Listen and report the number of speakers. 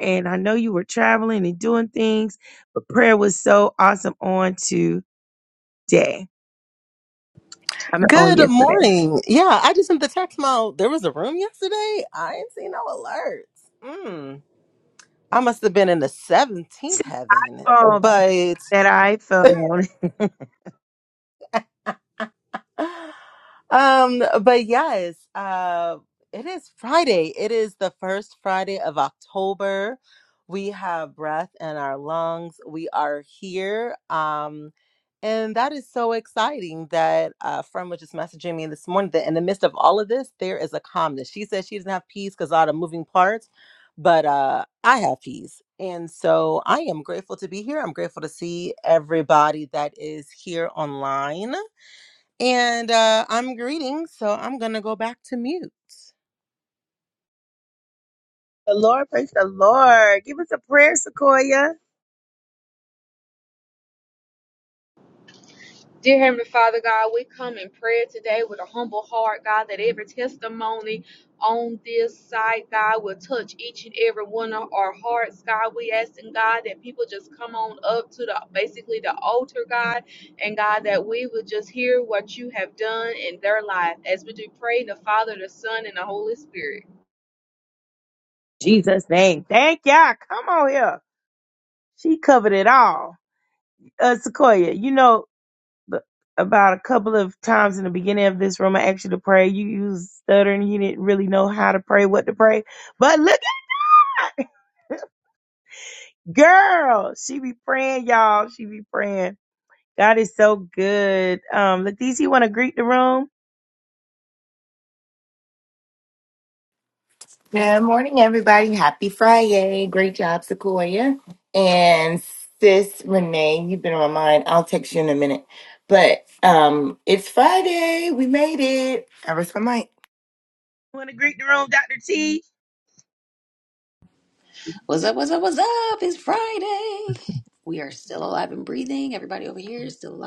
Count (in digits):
5